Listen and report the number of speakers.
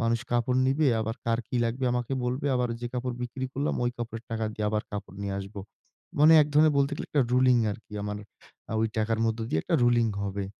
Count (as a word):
one